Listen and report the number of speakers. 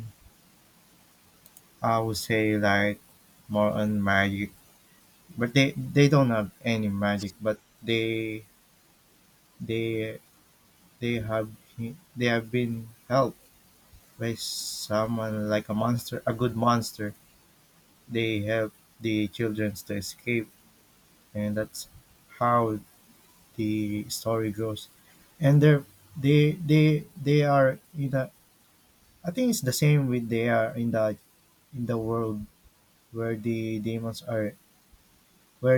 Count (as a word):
one